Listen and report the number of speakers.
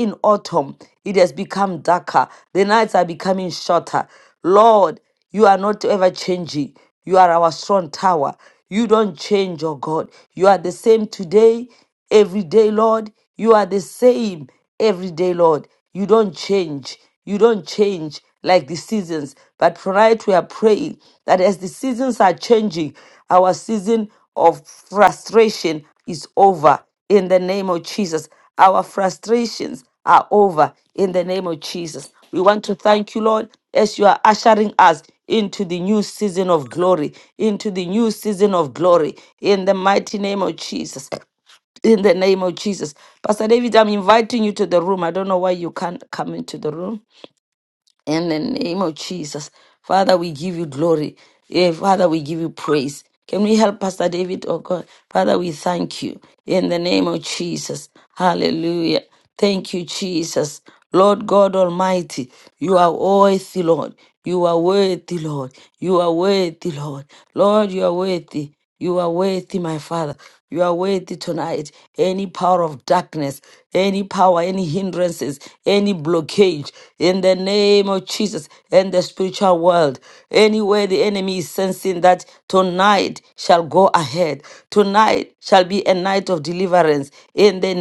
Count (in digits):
1